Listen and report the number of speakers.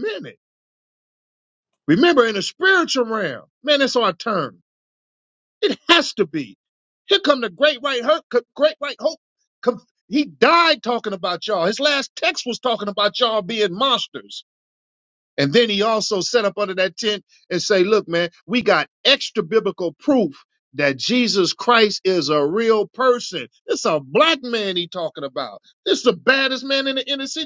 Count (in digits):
1